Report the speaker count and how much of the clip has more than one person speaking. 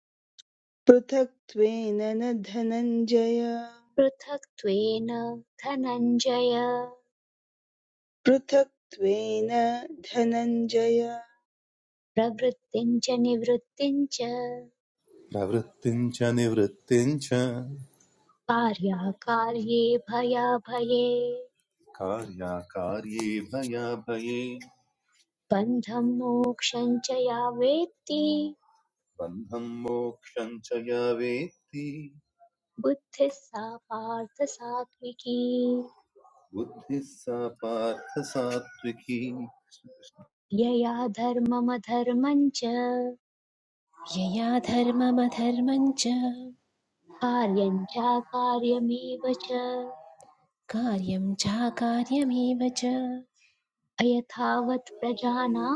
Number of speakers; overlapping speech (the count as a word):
four, no overlap